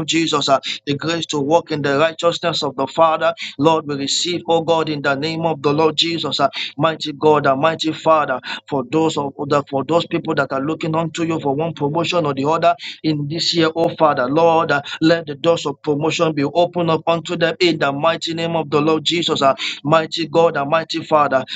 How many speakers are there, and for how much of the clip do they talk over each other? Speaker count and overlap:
1, no overlap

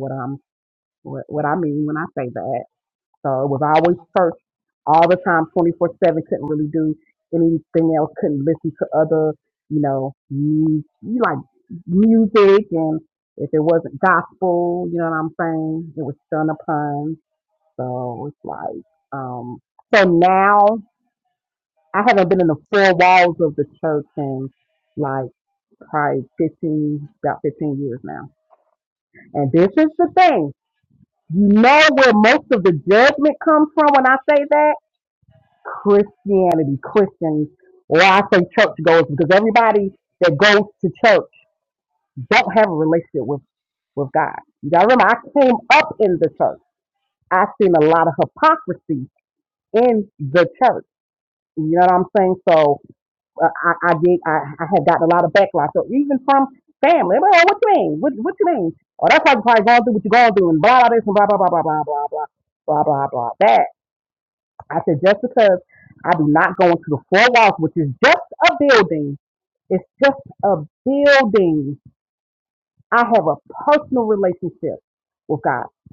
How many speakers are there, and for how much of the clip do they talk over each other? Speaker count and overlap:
1, no overlap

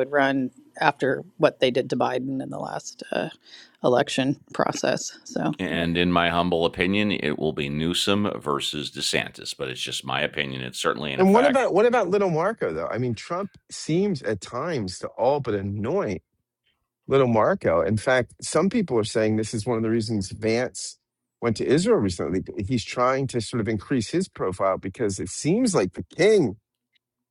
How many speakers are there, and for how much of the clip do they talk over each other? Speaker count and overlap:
3, about 3%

